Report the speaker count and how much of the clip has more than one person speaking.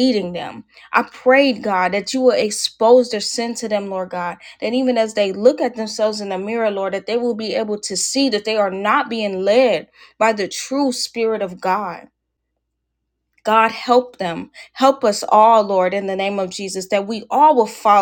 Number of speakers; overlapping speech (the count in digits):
1, no overlap